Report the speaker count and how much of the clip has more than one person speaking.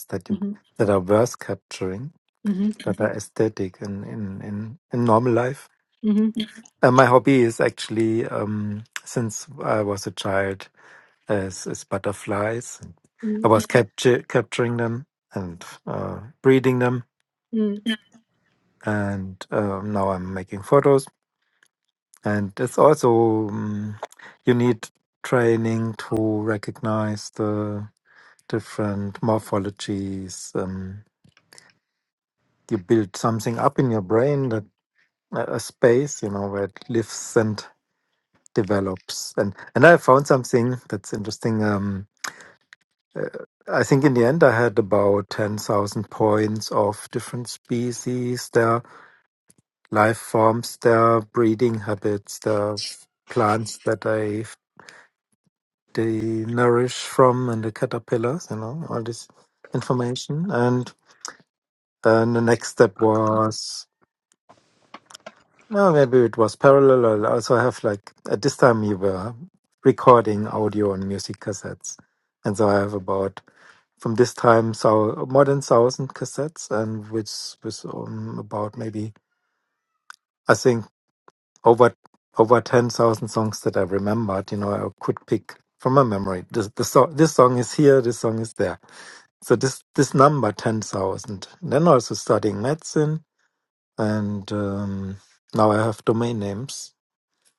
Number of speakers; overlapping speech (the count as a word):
two, under 1%